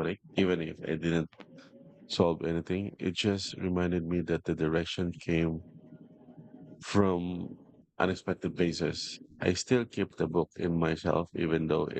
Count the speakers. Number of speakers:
one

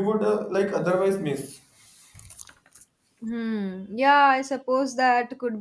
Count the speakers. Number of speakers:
two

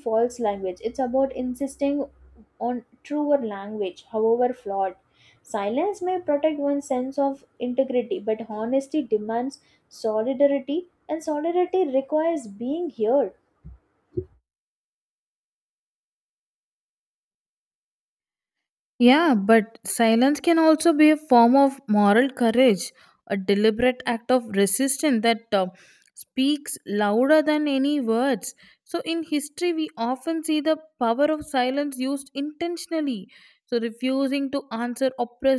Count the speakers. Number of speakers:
two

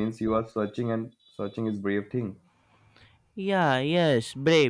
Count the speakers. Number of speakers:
two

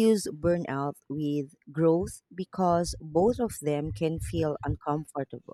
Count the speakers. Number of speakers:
one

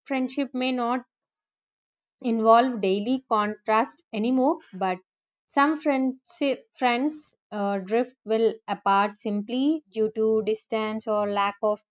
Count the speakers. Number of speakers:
one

